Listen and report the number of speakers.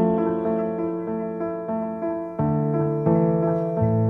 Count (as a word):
zero